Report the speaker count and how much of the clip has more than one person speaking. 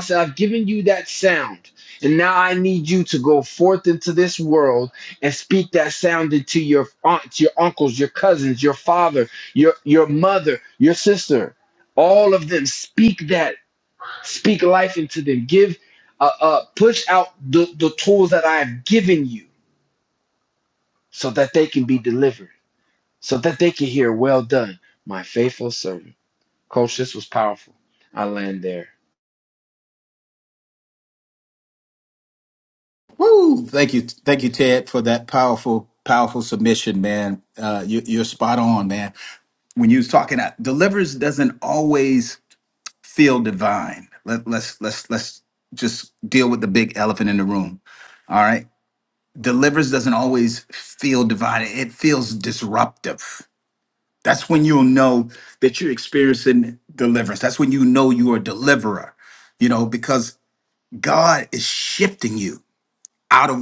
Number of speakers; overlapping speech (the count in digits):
2, no overlap